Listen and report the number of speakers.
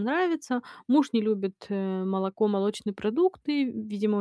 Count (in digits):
1